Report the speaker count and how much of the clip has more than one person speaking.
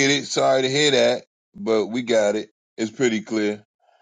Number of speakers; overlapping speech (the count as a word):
one, no overlap